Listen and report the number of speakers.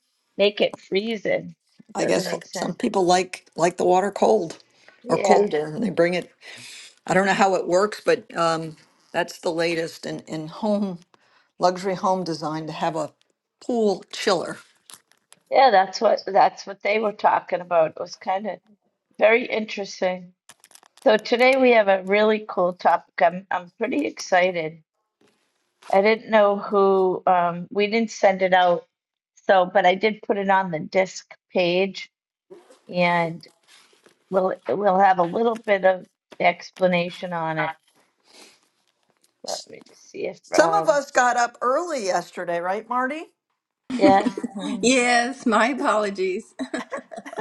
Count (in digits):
3